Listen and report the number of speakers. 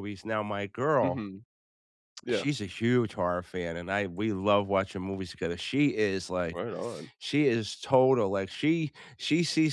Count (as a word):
two